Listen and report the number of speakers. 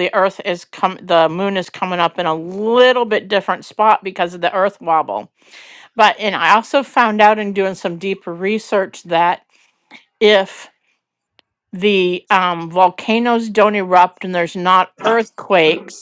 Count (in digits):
1